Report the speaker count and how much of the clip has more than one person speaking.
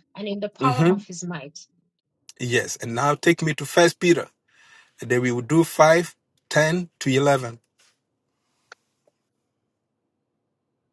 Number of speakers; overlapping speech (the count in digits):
2, about 3%